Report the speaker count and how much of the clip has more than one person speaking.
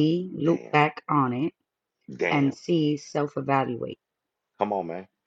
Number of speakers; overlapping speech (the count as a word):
two, about 10%